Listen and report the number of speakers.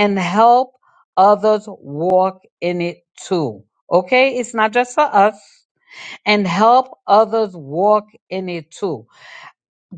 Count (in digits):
1